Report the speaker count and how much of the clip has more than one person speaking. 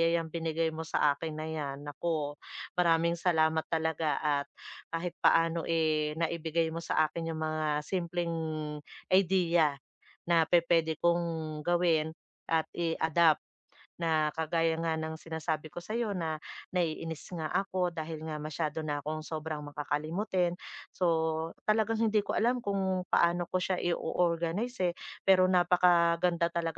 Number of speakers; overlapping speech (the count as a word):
one, no overlap